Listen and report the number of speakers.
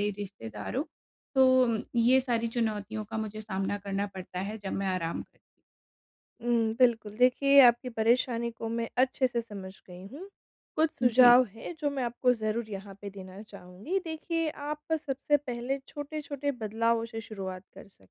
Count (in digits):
2